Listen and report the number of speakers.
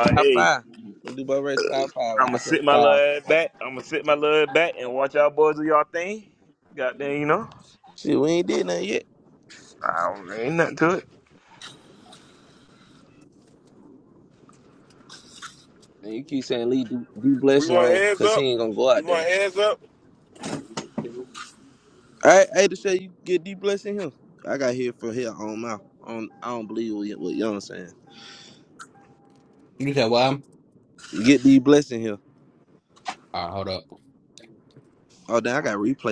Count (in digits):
4